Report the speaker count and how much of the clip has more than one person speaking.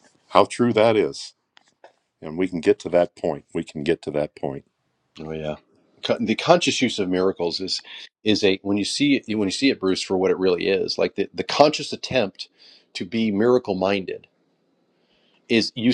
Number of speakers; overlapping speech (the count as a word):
two, no overlap